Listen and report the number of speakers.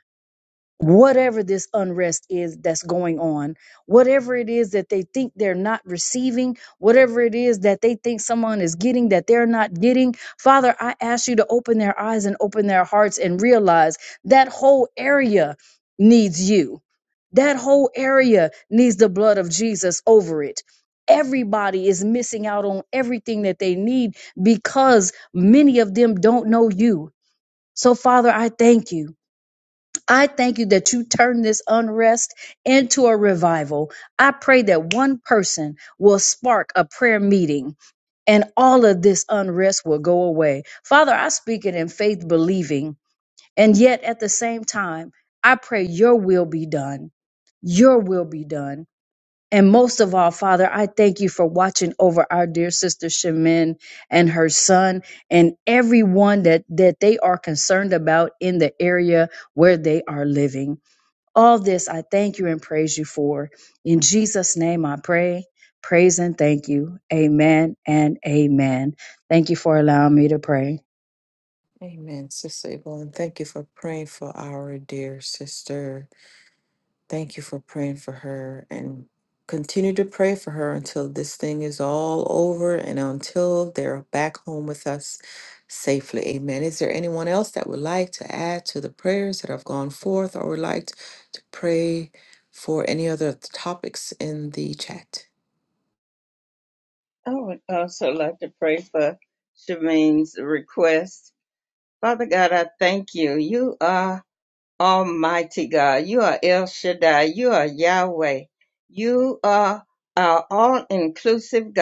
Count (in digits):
3